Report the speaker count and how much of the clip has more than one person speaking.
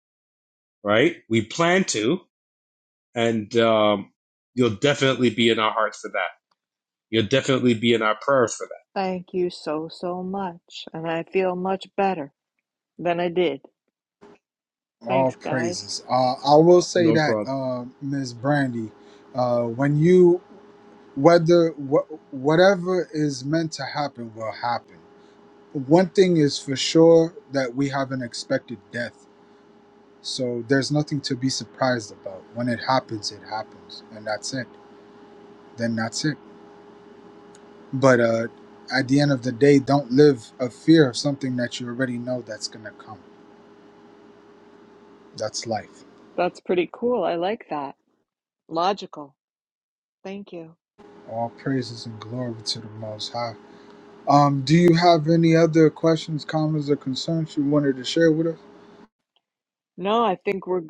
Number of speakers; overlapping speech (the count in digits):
3, about 2%